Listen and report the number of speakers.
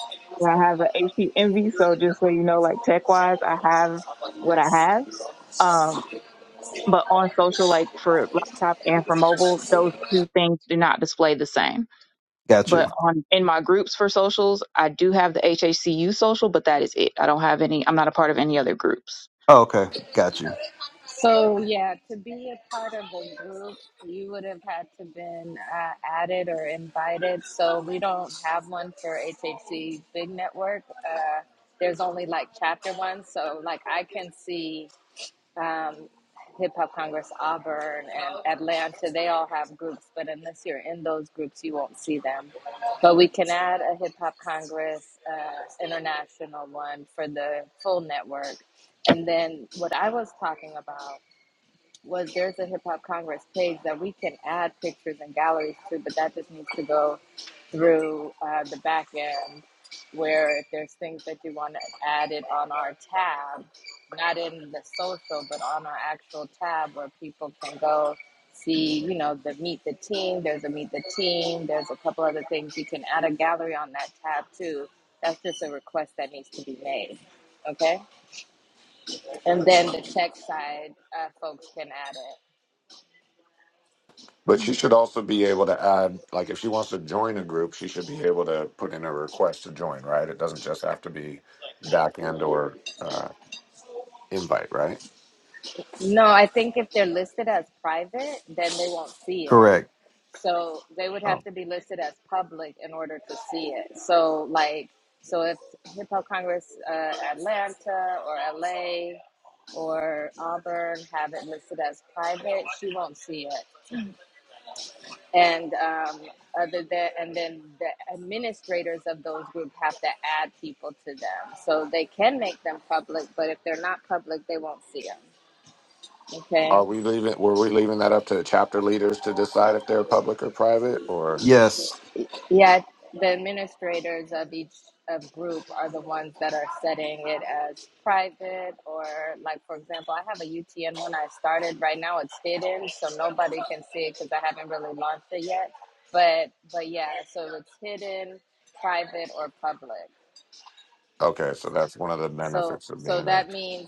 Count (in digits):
4